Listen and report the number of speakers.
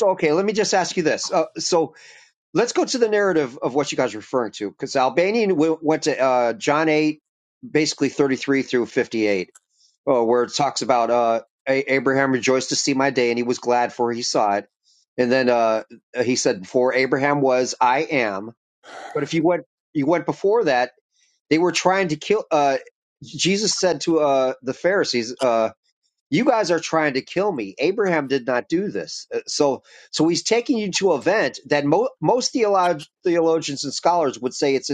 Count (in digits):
1